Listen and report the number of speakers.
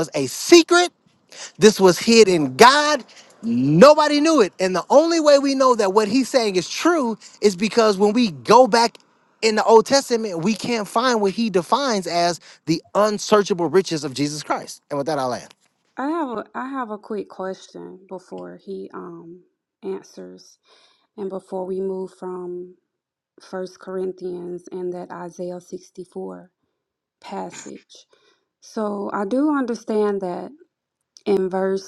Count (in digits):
2